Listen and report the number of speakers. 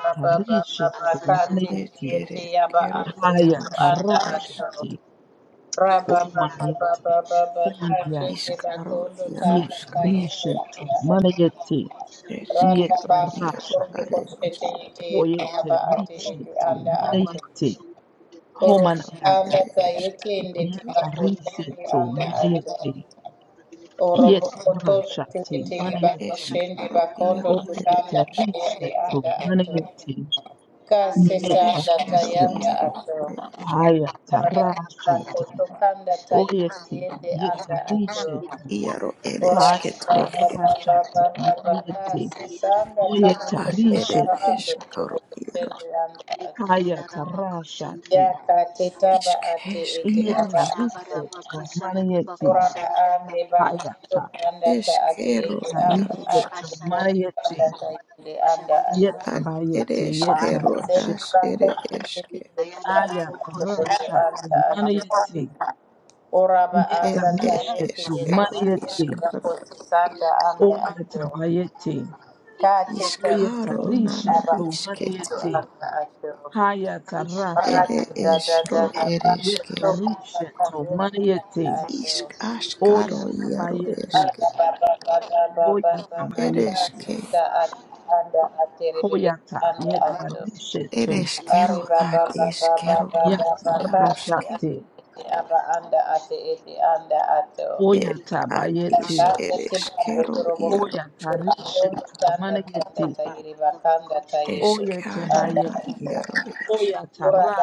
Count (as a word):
four